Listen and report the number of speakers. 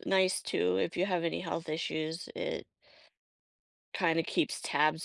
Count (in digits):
1